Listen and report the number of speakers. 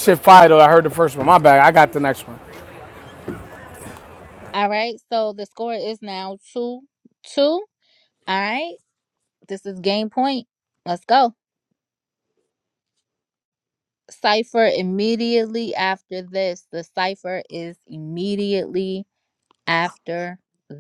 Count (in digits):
2